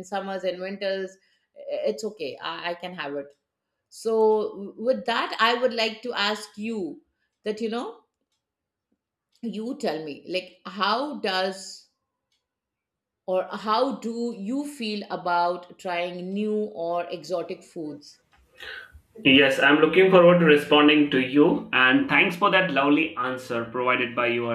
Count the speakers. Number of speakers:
2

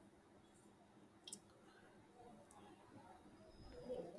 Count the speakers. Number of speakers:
0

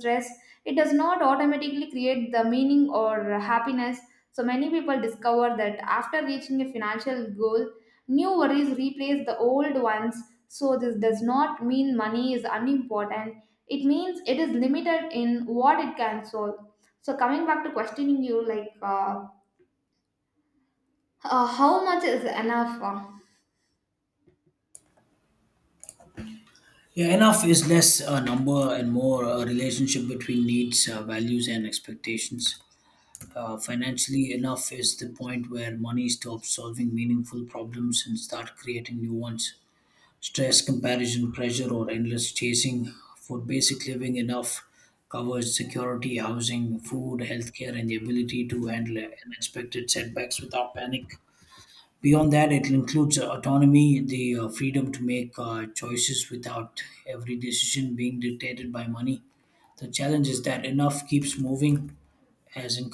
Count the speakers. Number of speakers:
2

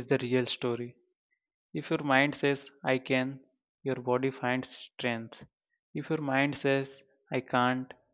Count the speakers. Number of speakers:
1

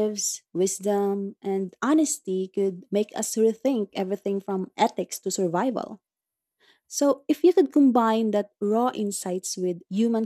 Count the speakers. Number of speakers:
1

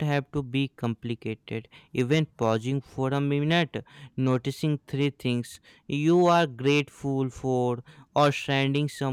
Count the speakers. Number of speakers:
1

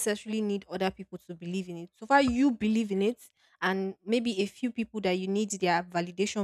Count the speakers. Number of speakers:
1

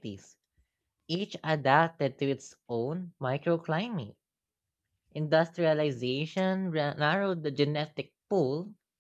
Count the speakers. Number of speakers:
1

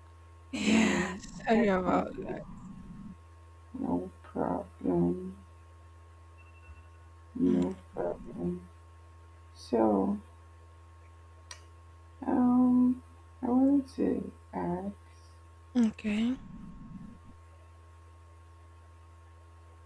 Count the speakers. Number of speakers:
2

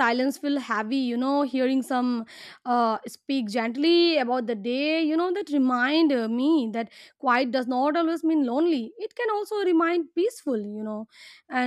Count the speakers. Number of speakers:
1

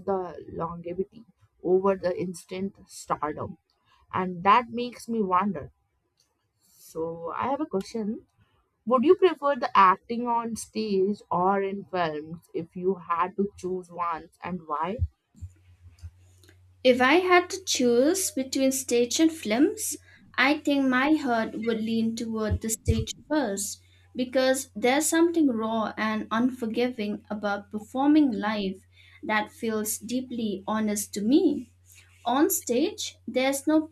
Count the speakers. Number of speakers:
2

